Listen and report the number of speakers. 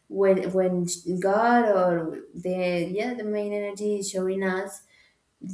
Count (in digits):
1